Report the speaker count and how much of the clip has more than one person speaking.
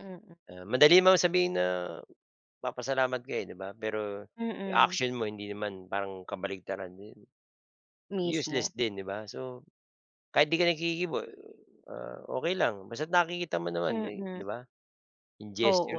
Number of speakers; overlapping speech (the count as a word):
two, about 11%